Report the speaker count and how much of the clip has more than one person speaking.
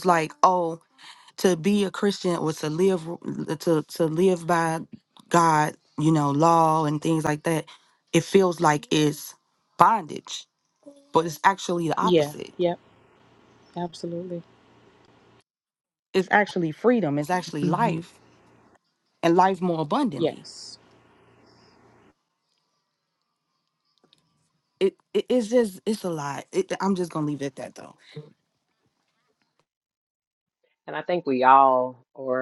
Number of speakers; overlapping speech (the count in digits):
3, about 3%